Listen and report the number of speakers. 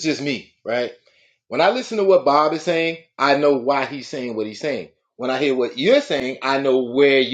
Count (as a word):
one